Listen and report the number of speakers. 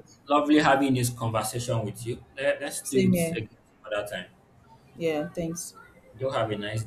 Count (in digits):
2